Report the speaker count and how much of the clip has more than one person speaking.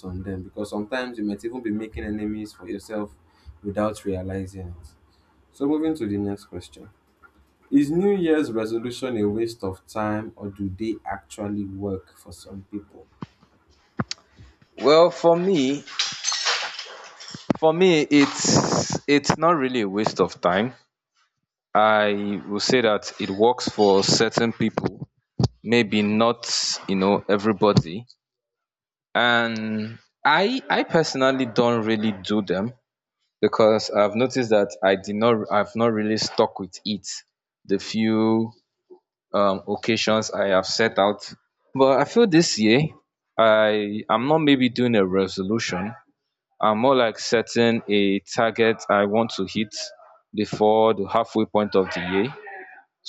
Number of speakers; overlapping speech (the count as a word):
two, no overlap